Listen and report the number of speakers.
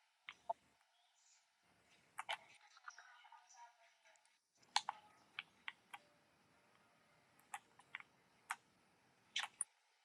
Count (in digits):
0